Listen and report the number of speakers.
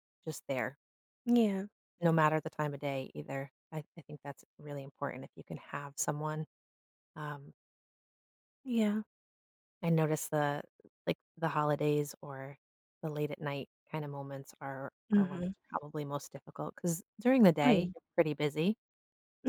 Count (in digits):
2